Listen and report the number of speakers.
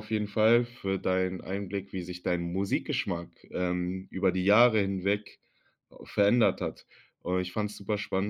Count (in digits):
1